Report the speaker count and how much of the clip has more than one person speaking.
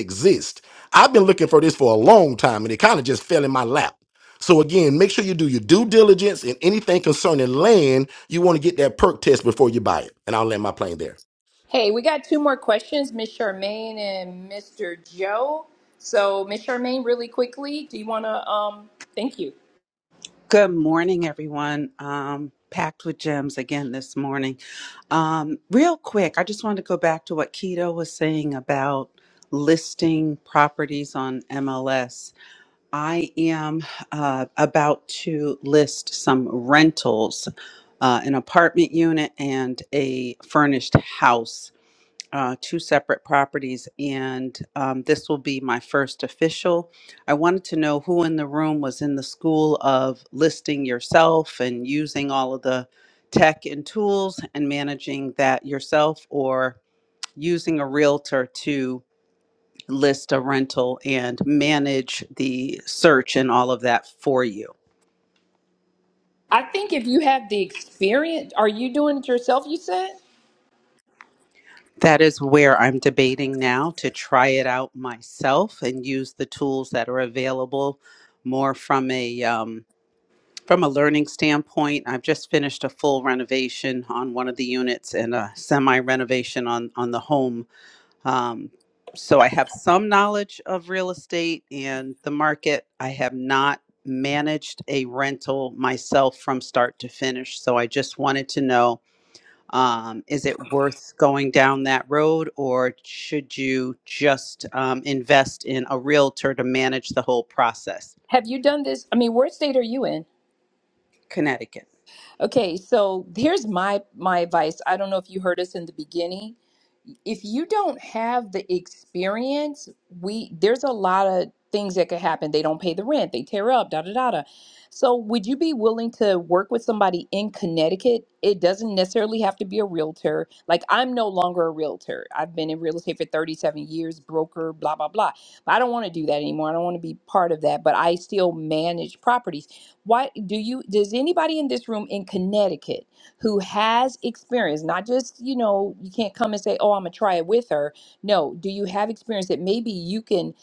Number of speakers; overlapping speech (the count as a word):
three, no overlap